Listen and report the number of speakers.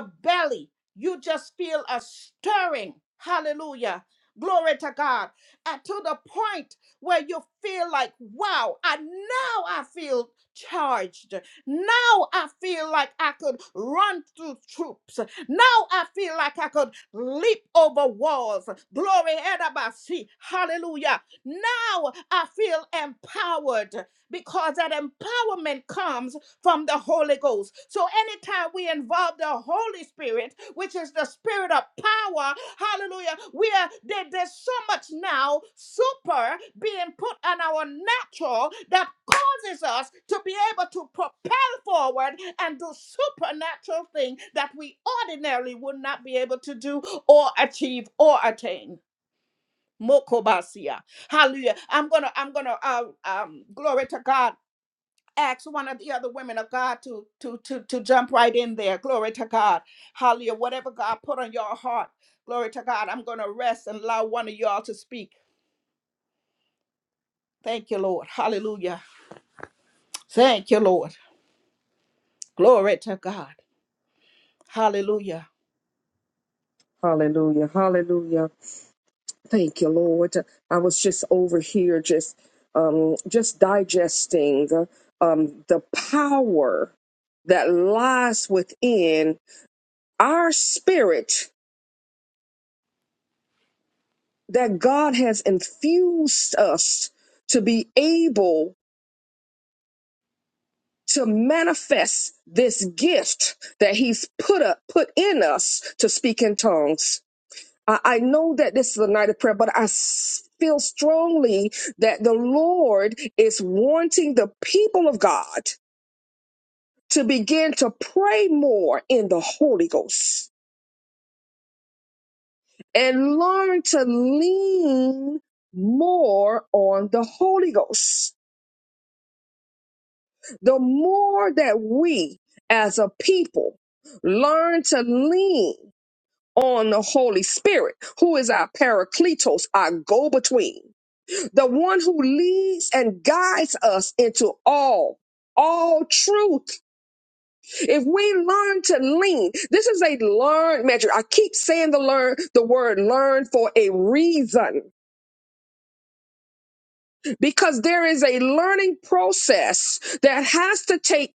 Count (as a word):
two